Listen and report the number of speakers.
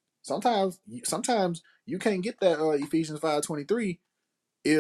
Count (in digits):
1